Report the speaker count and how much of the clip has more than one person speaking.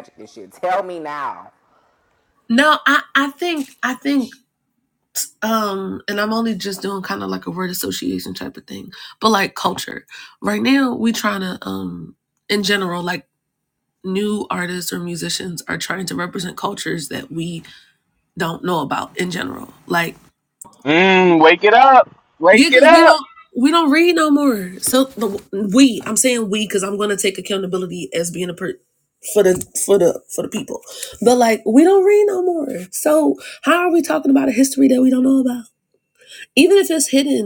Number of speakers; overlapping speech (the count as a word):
three, about 2%